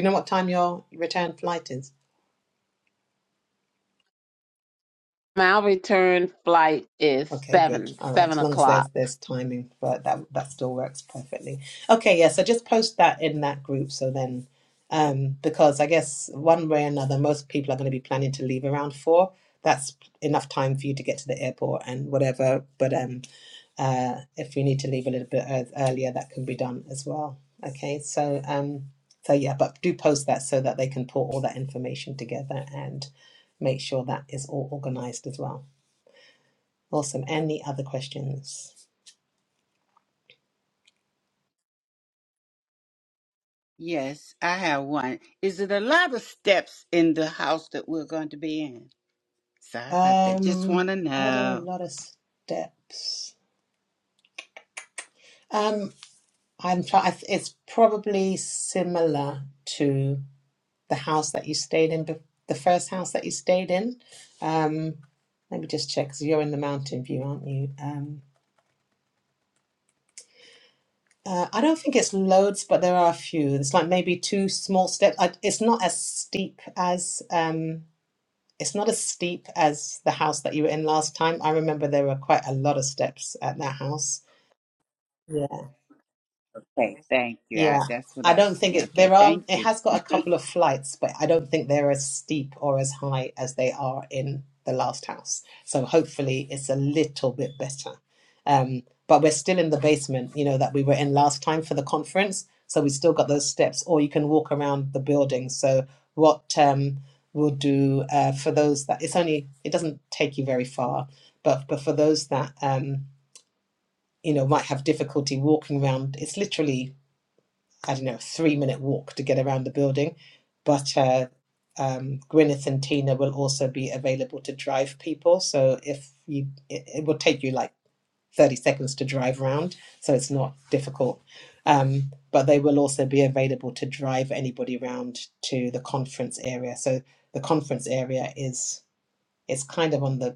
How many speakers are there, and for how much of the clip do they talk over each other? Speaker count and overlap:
three, about 4%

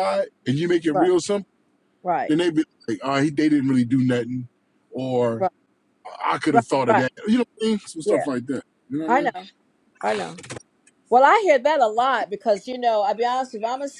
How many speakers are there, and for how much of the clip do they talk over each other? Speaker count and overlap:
two, about 7%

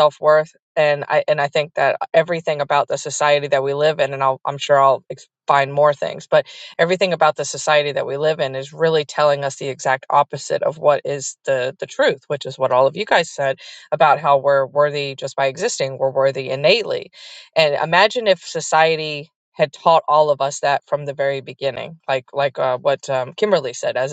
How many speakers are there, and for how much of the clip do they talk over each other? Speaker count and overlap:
one, no overlap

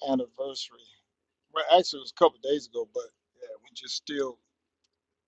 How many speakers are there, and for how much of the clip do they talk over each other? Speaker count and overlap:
one, no overlap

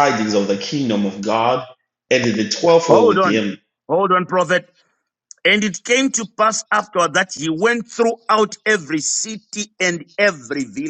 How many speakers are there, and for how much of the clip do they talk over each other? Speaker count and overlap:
two, about 5%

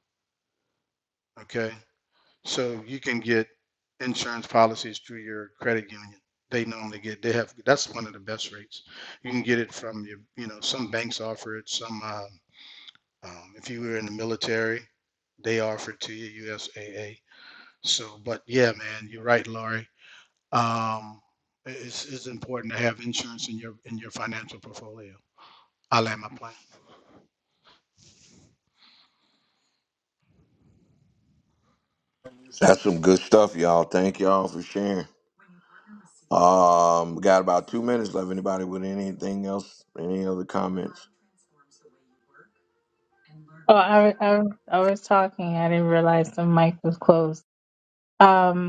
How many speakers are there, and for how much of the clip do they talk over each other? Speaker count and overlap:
three, no overlap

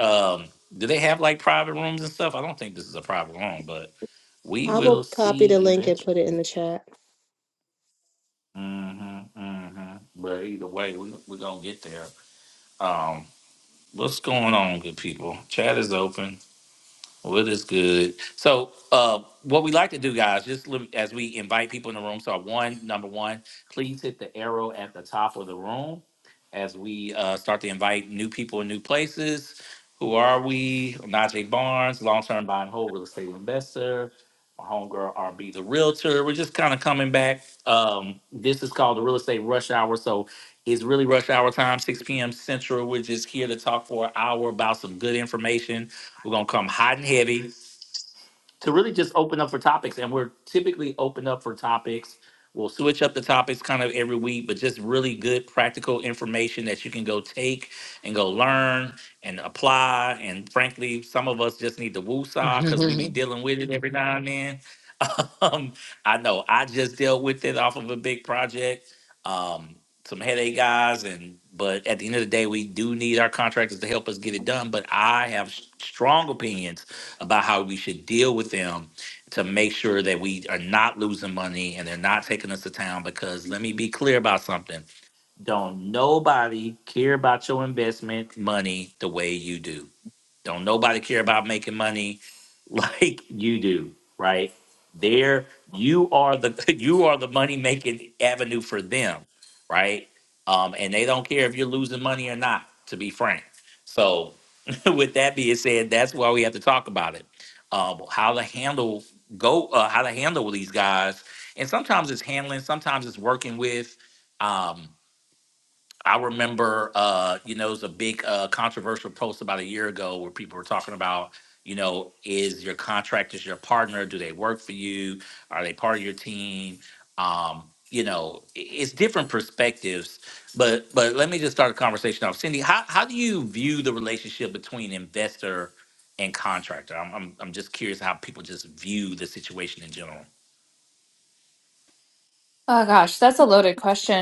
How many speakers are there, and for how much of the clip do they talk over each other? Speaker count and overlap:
three, about 1%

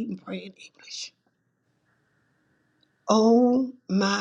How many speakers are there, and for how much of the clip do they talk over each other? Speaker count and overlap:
one, no overlap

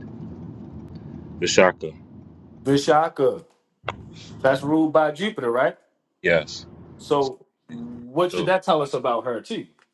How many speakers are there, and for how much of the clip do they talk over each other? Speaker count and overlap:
two, about 3%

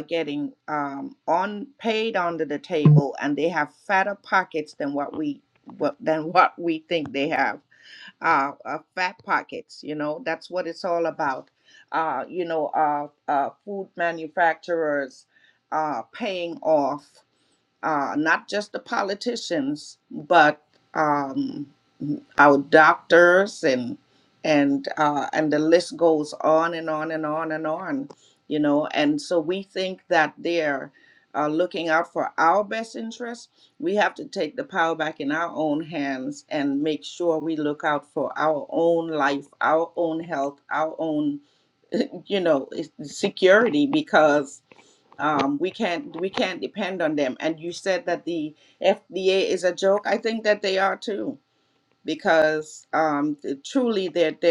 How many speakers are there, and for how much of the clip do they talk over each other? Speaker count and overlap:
one, no overlap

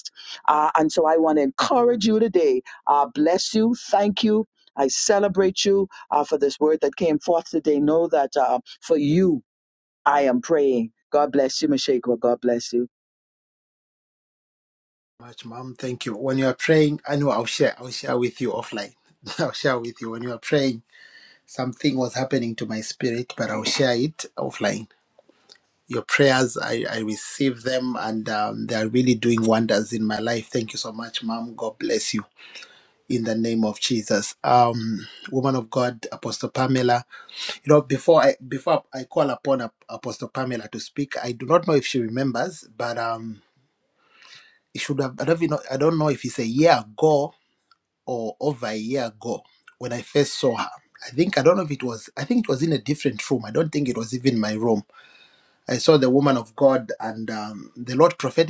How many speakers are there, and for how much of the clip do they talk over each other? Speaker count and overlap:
two, no overlap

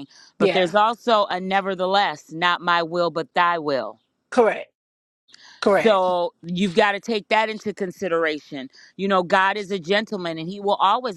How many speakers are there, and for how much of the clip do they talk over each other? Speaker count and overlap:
two, about 6%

